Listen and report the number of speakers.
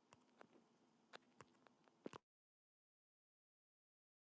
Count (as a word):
zero